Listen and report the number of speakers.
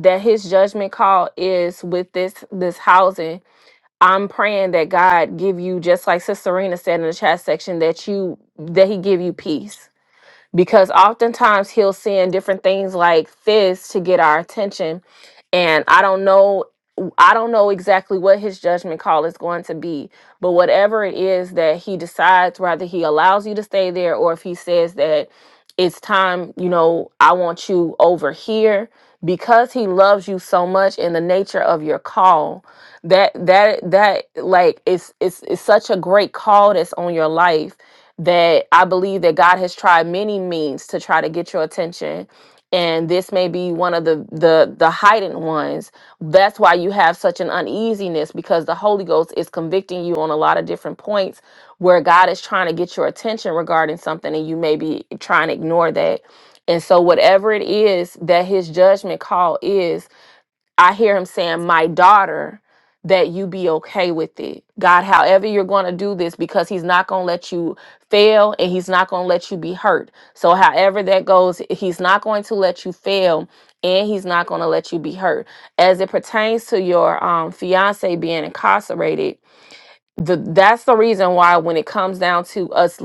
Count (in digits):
1